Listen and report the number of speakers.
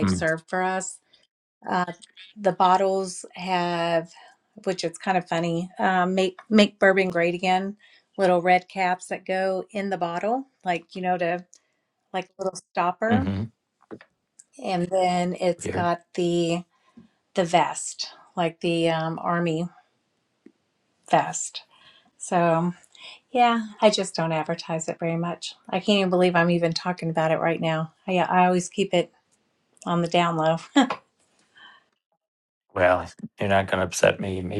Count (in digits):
2